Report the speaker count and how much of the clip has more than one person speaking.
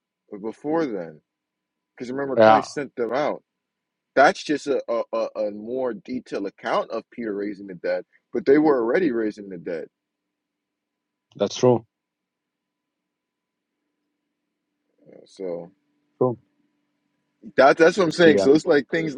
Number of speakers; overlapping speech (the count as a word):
two, about 3%